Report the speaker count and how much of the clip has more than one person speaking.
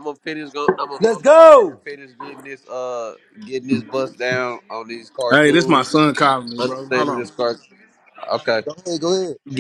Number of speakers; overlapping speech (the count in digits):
3, about 21%